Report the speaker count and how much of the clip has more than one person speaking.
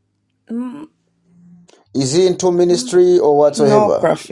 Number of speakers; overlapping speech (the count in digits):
2, about 13%